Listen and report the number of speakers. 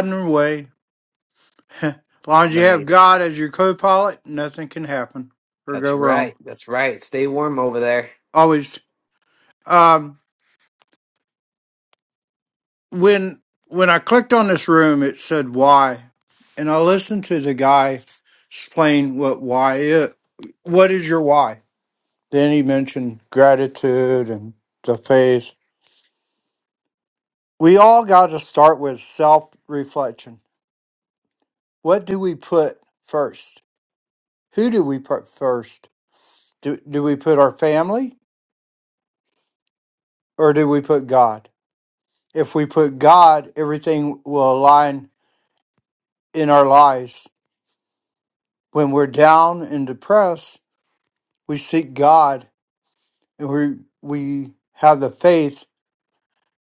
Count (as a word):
two